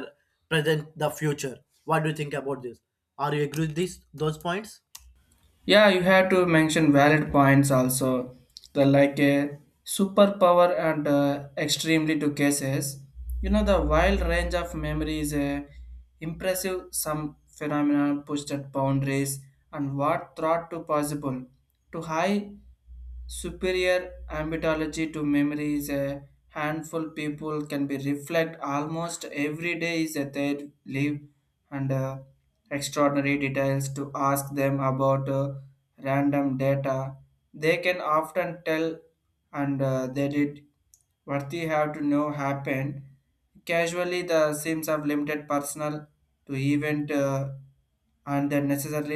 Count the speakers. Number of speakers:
two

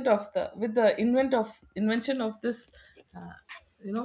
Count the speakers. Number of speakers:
one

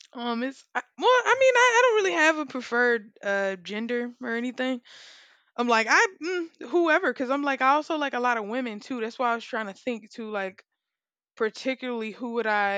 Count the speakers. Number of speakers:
one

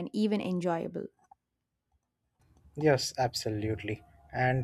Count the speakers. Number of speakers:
two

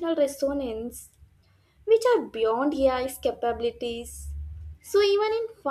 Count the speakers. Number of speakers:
one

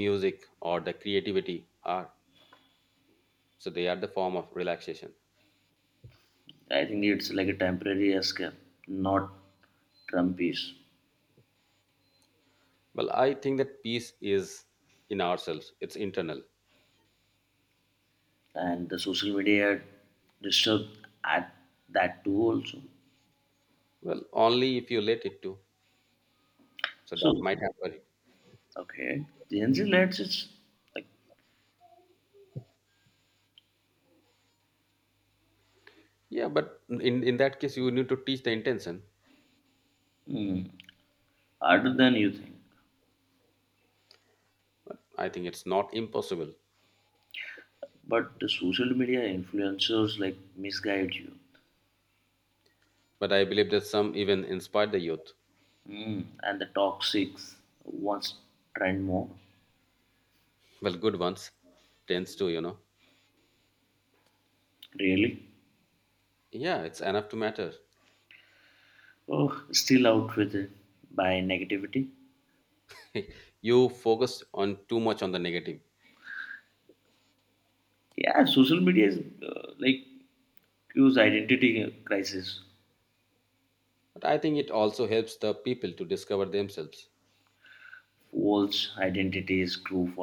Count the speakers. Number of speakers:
two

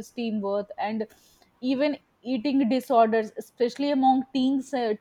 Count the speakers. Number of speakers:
one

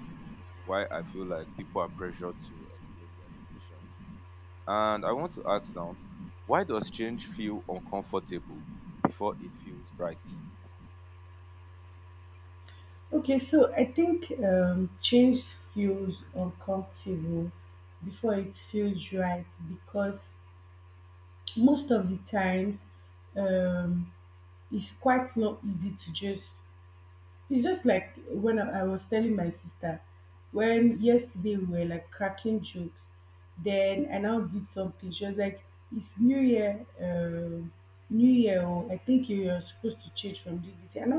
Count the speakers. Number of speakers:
two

